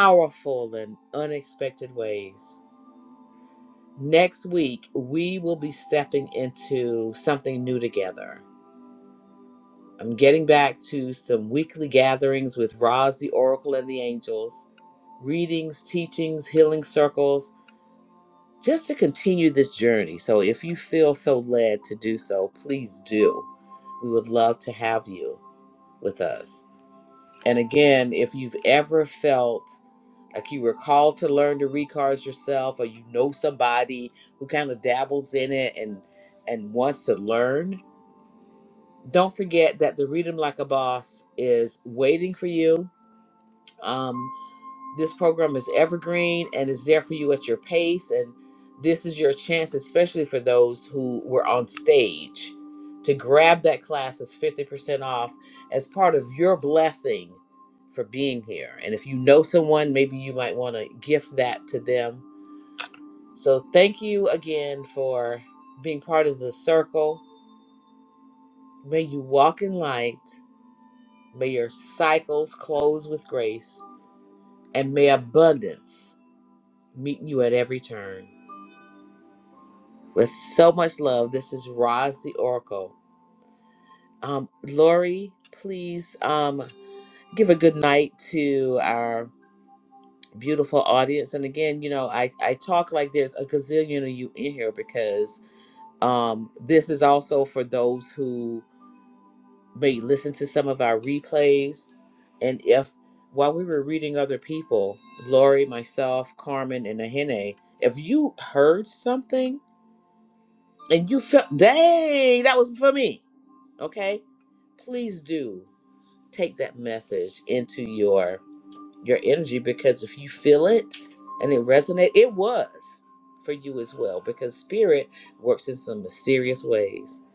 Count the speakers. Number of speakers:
one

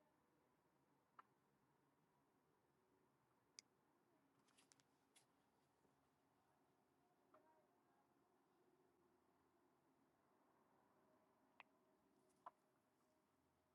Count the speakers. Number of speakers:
zero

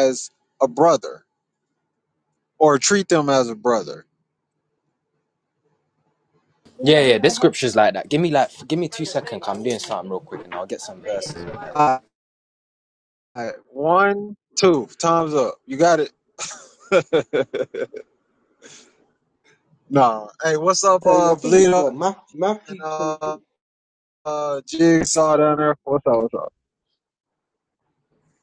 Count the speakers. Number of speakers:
three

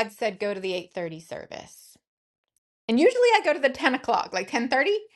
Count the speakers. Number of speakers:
one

